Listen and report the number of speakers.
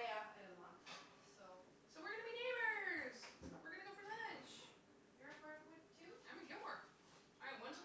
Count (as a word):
two